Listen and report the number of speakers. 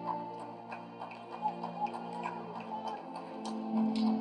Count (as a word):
zero